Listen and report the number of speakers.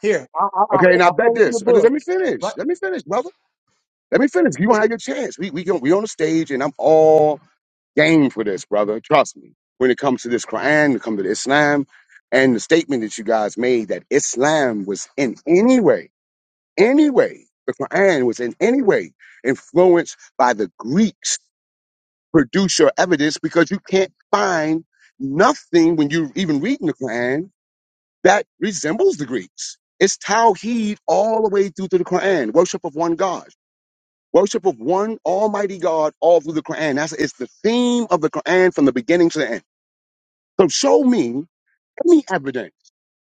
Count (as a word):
two